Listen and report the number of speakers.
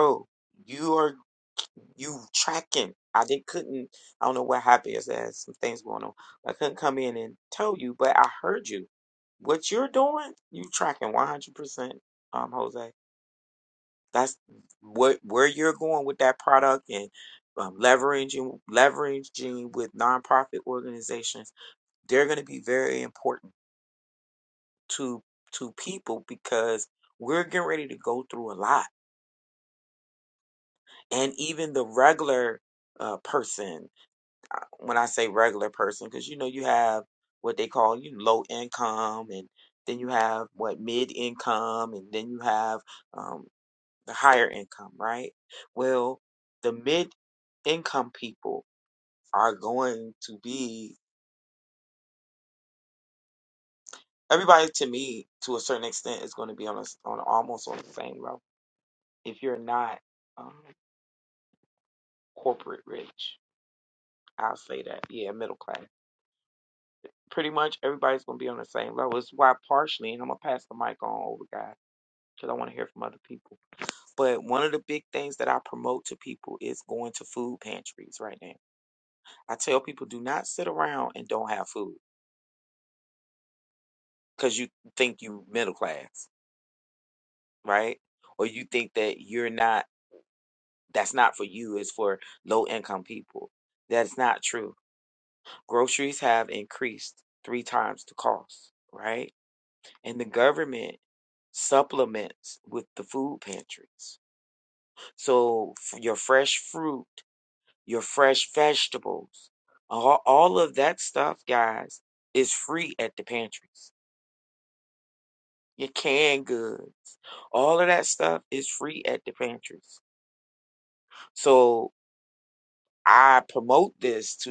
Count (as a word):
one